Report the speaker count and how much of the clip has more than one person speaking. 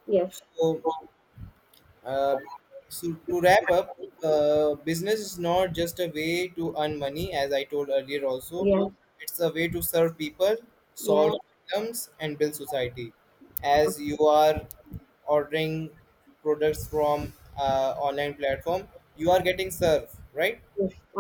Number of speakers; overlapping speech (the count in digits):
2, about 2%